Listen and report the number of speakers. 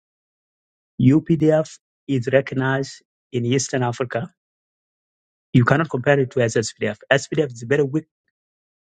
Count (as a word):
one